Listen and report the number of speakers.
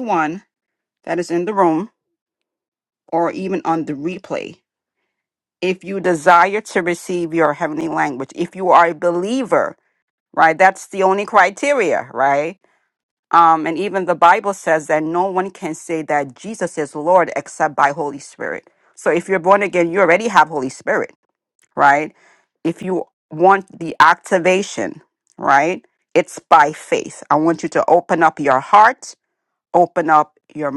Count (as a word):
one